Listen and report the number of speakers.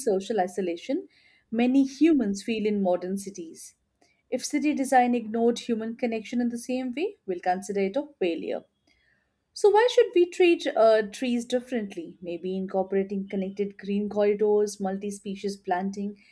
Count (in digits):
1